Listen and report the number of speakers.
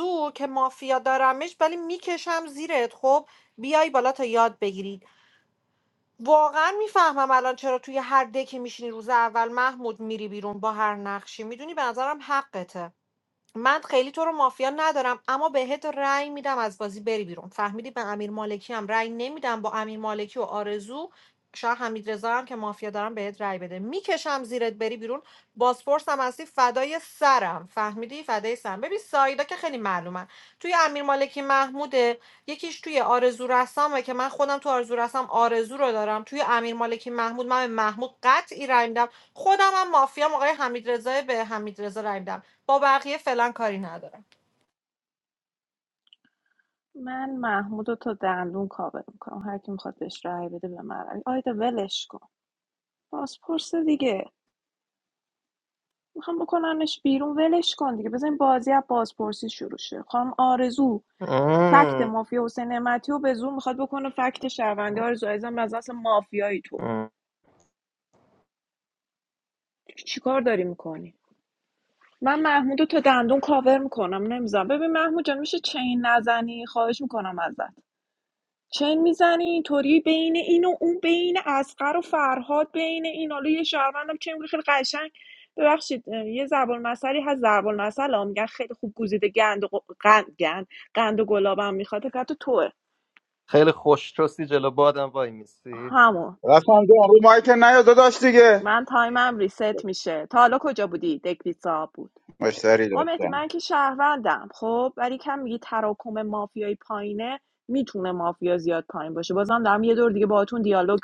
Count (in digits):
4